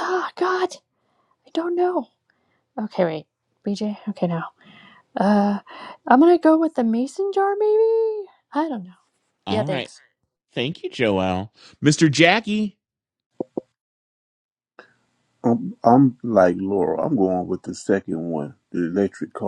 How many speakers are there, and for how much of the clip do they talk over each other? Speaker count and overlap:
3, about 2%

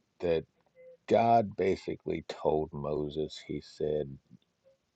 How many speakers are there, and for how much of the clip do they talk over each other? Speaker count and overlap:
1, no overlap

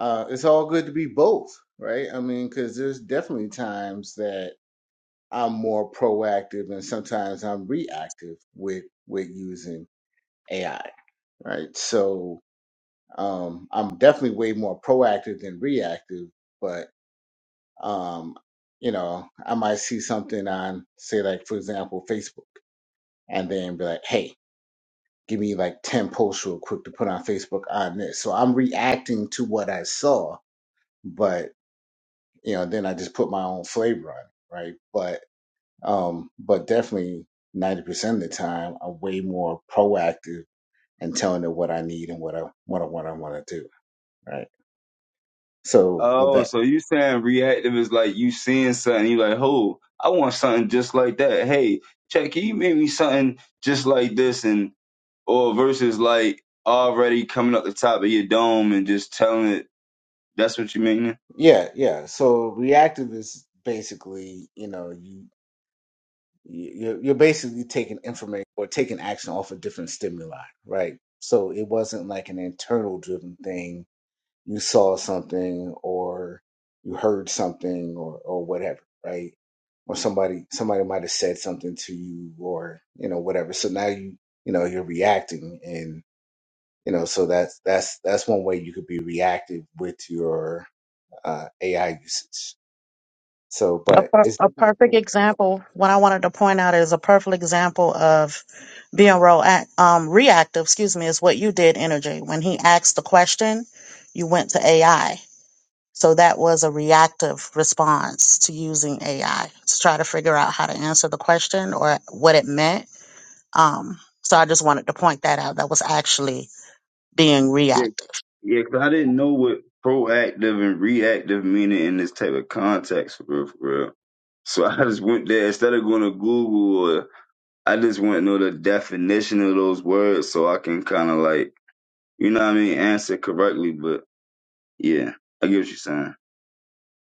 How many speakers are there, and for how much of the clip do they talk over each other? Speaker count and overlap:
3, about 2%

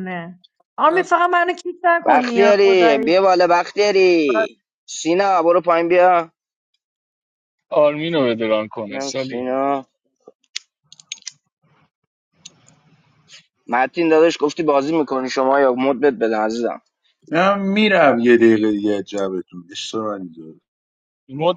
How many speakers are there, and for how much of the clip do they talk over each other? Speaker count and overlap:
4, about 7%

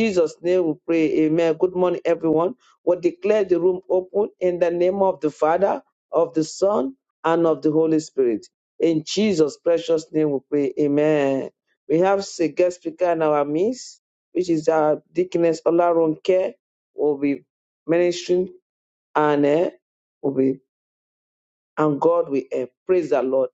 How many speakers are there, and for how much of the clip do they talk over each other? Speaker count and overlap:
1, no overlap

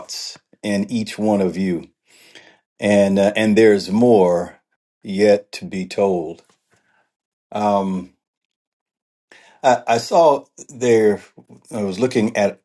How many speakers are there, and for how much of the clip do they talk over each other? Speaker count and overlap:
1, no overlap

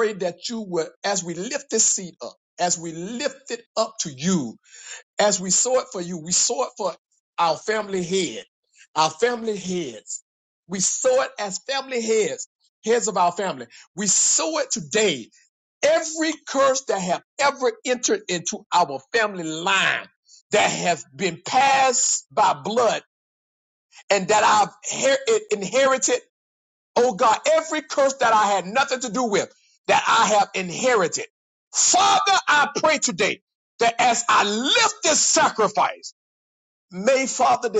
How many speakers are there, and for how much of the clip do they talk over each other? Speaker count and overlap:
1, no overlap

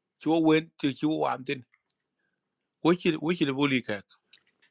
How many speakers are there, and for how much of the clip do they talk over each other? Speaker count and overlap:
1, no overlap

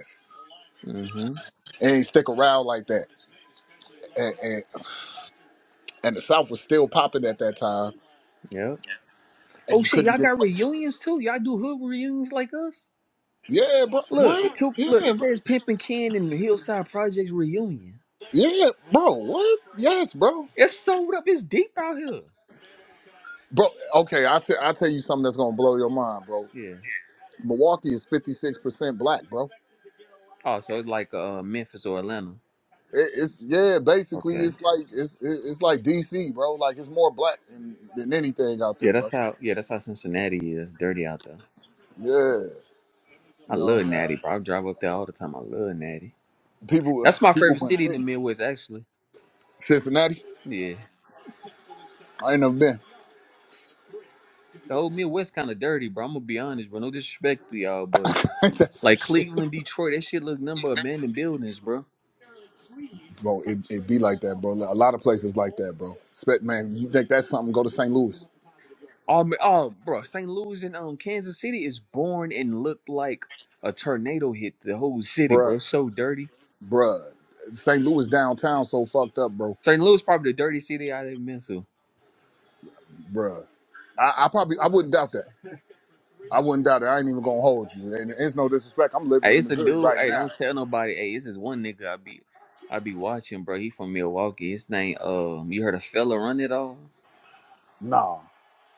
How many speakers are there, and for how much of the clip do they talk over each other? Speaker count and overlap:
2, about 6%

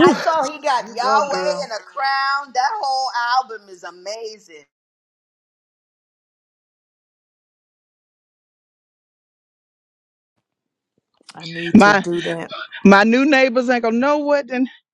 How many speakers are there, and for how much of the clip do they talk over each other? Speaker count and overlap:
3, about 9%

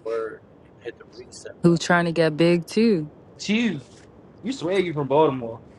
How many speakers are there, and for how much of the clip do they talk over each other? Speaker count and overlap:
3, about 4%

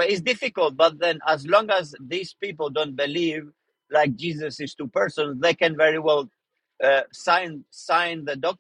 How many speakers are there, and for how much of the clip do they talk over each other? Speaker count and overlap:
1, no overlap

